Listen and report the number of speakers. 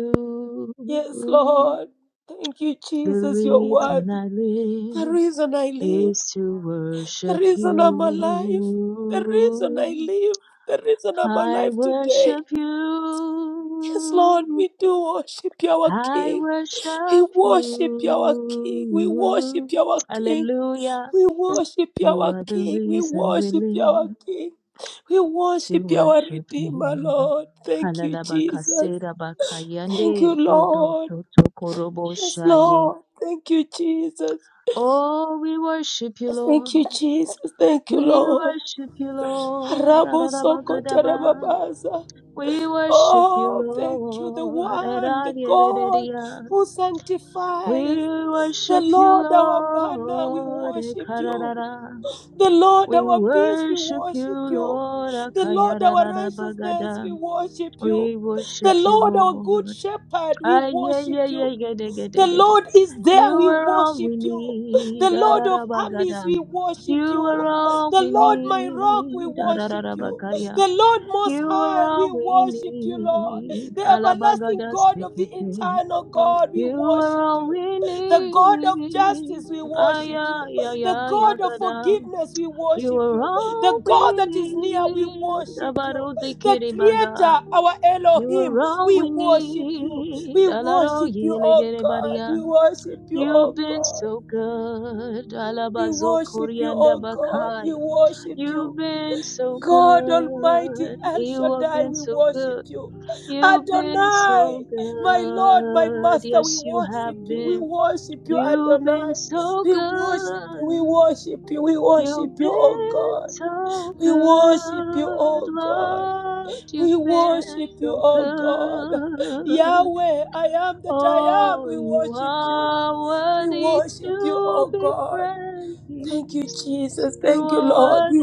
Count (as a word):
two